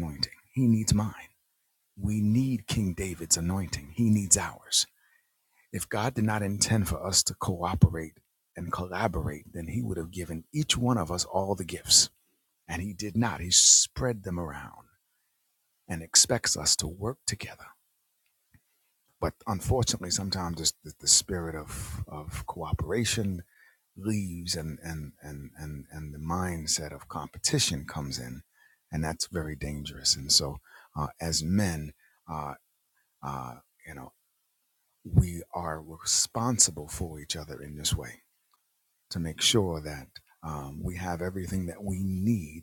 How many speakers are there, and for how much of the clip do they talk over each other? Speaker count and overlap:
1, no overlap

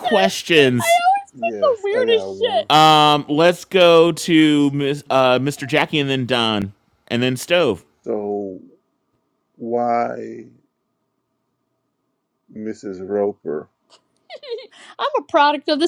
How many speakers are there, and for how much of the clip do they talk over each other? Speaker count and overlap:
3, about 8%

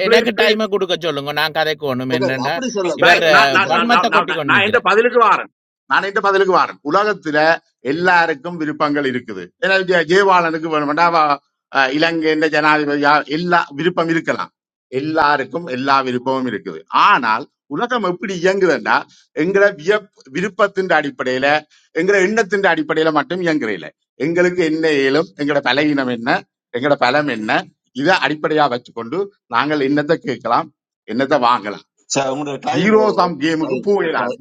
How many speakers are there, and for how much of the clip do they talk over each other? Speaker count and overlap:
3, about 13%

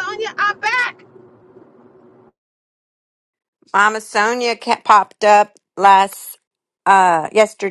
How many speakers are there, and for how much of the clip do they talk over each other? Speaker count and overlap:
2, no overlap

